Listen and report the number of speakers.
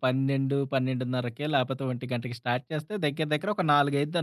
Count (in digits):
1